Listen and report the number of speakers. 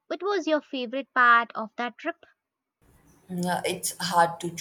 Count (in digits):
2